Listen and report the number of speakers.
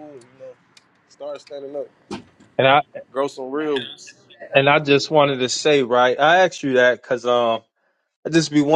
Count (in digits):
2